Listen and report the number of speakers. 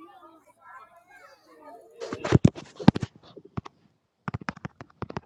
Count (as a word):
zero